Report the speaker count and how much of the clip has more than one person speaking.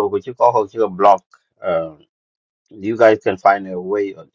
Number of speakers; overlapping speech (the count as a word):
one, no overlap